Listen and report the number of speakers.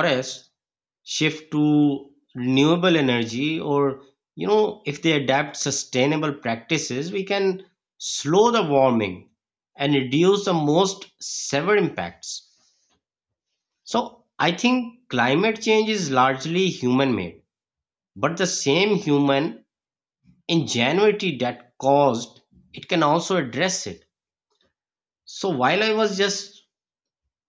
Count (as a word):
one